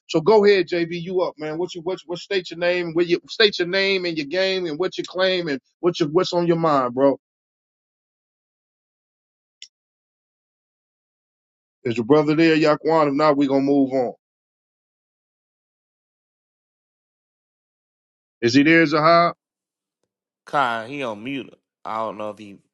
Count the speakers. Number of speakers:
2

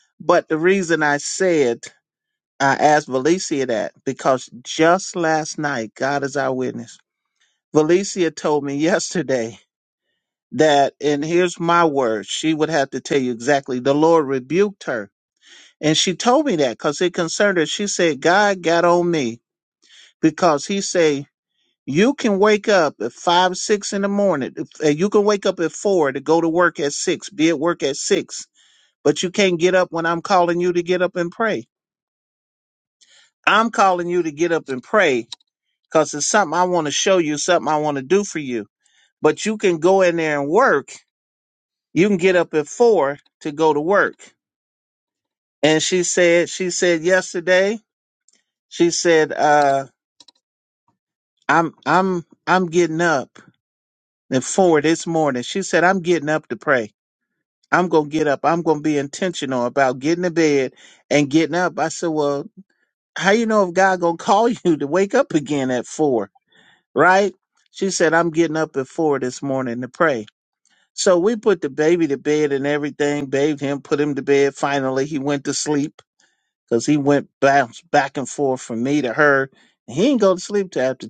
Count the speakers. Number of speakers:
1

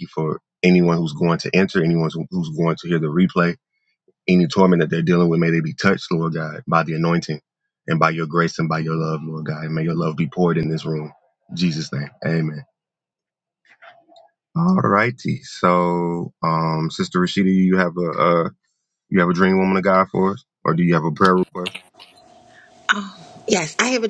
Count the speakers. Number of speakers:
2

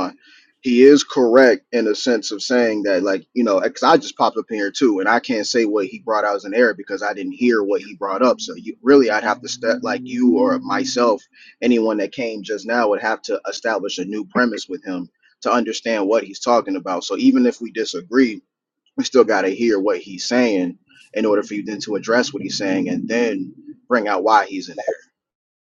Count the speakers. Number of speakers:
1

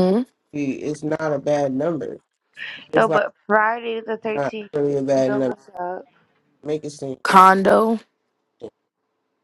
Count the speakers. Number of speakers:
3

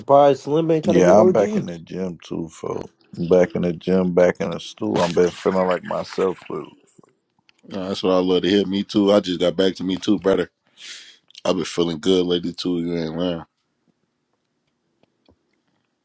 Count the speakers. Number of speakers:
3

